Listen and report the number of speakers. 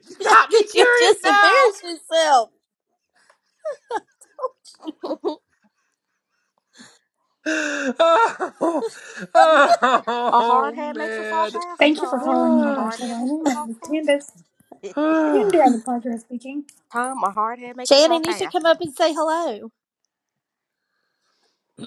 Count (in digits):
4